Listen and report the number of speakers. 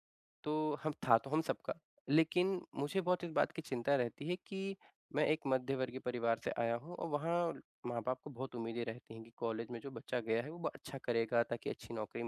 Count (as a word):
one